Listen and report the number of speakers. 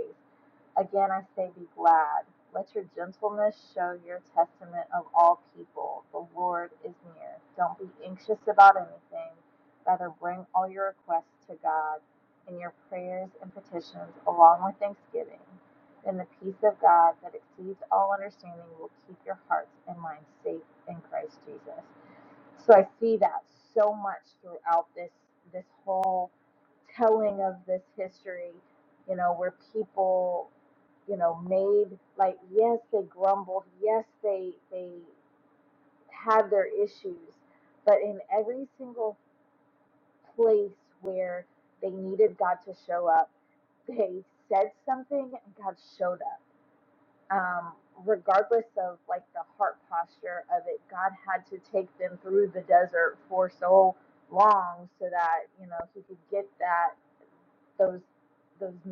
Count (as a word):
one